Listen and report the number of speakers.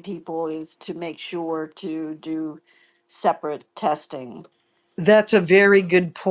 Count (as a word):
two